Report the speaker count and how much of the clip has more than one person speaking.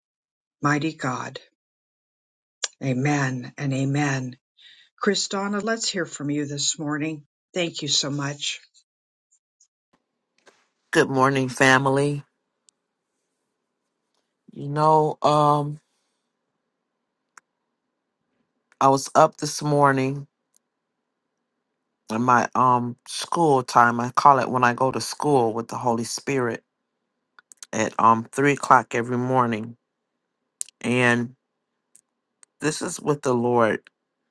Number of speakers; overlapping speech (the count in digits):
2, no overlap